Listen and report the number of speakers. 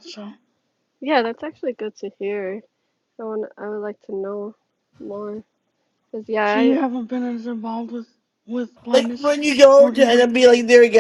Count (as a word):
three